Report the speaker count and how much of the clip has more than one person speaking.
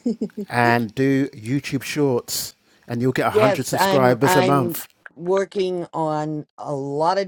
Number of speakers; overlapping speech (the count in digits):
2, about 20%